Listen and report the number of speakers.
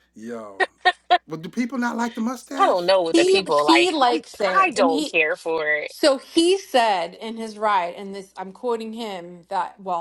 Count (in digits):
3